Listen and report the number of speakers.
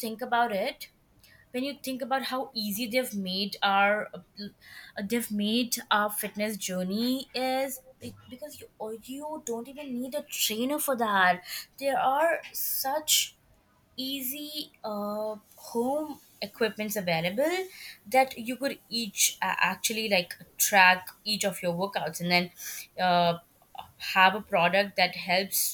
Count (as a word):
one